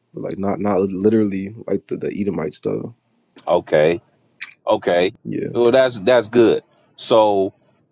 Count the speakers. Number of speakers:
2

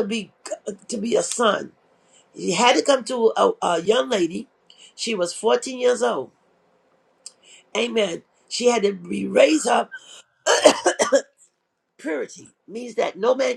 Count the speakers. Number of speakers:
1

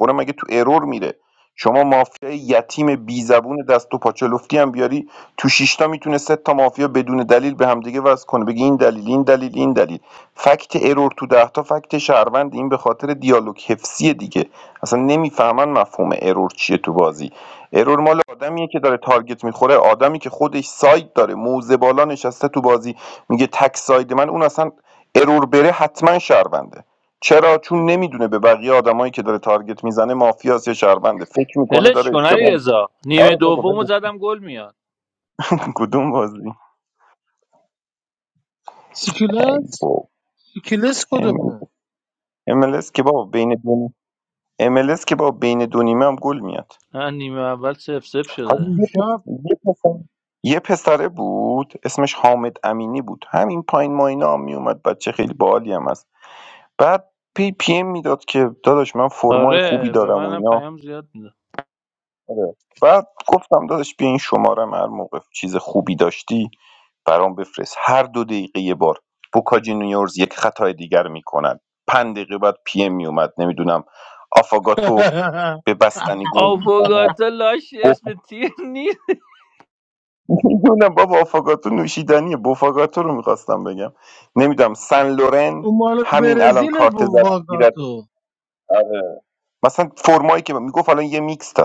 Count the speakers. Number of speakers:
3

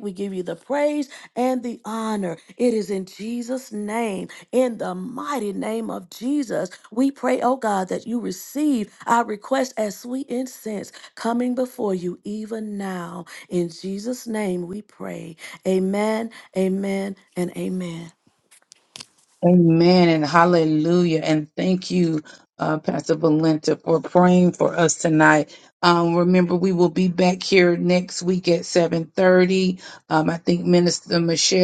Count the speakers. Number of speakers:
2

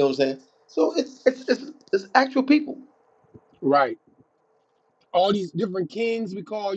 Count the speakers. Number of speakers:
2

